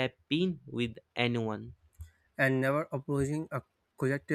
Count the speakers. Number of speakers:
two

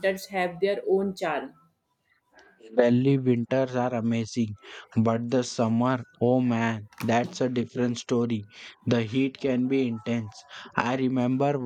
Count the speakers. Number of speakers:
two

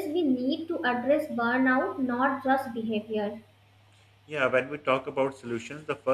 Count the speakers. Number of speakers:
two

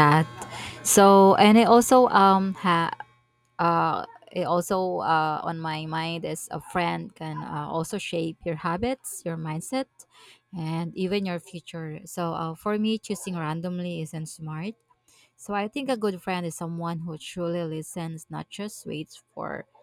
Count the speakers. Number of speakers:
one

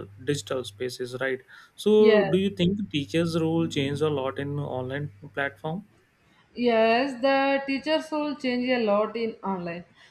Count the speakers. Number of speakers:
two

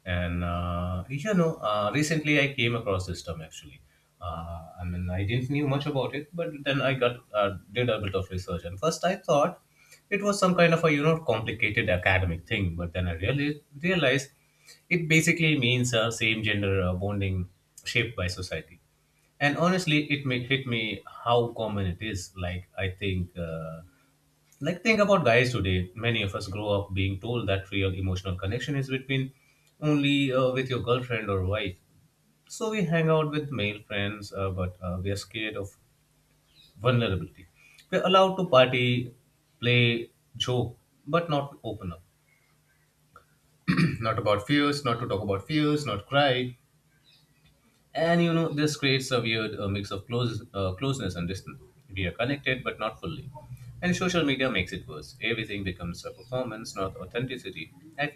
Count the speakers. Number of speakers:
one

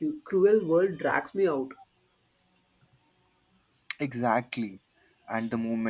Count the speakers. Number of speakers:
two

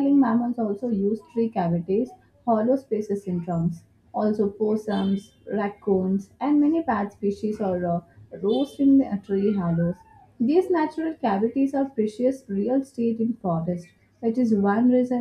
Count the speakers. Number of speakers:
one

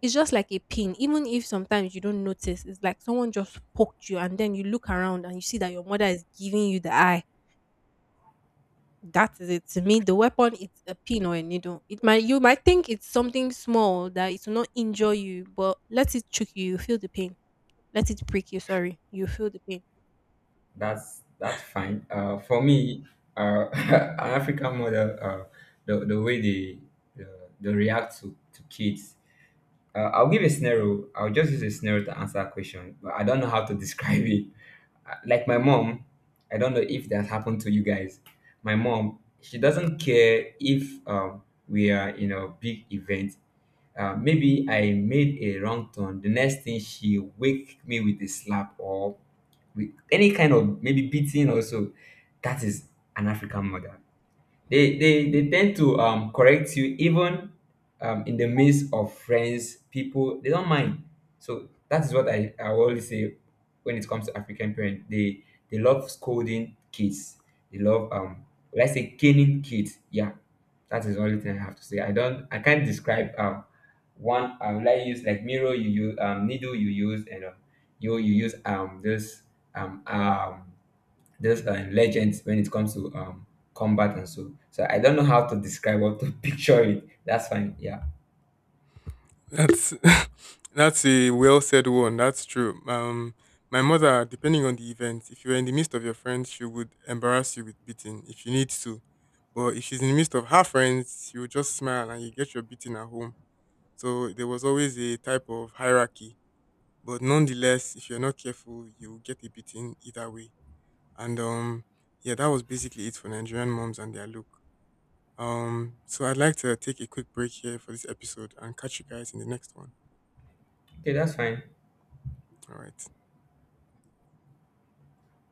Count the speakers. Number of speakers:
three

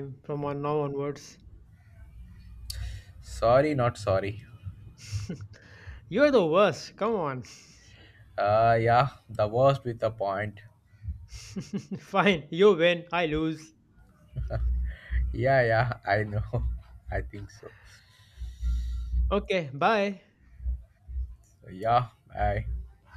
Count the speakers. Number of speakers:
two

